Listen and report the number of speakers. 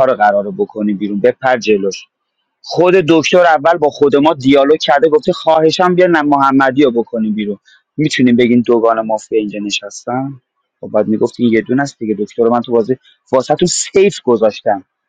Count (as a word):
one